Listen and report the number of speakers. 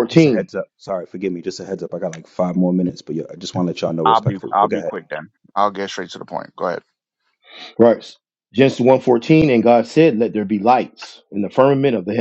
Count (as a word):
three